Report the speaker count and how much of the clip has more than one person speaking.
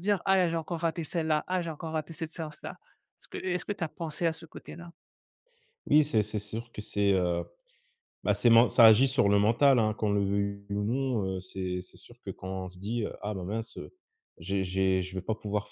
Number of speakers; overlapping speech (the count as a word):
two, no overlap